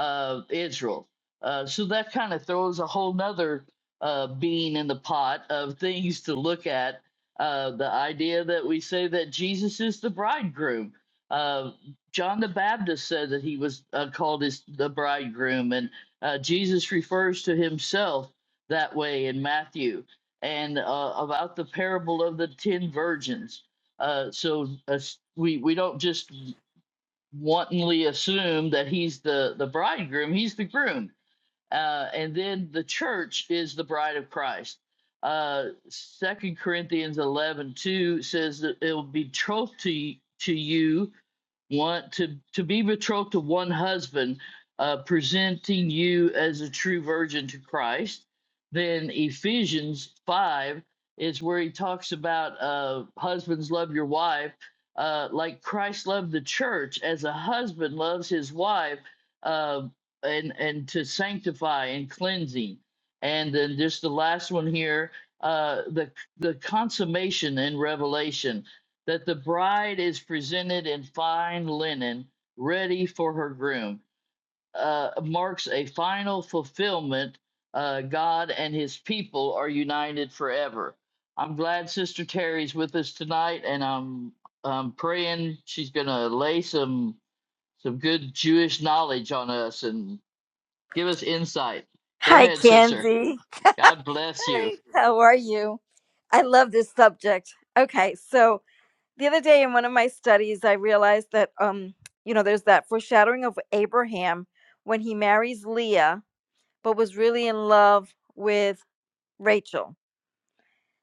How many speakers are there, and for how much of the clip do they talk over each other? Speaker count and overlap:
two, about 1%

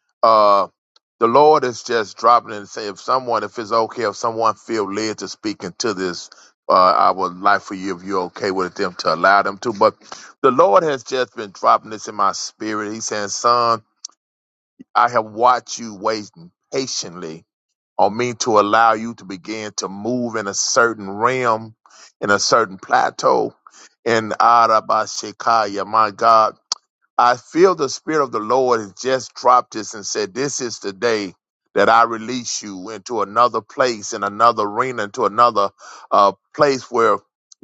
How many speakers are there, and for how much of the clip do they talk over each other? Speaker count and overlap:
one, no overlap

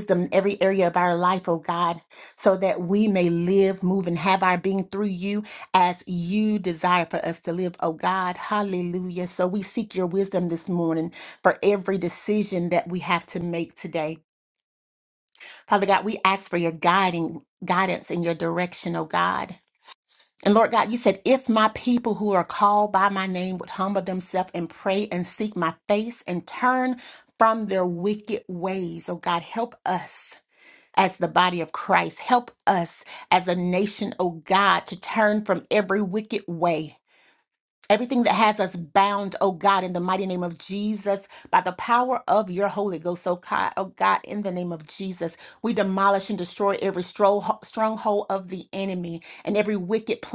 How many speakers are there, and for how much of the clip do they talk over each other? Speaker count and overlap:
one, no overlap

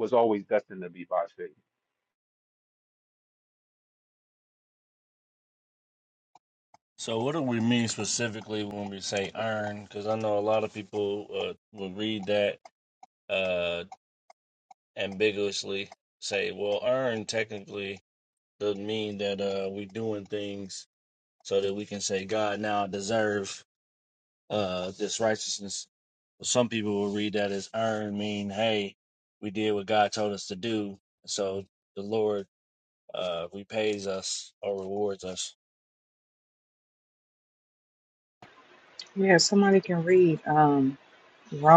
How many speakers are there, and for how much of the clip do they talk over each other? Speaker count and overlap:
three, no overlap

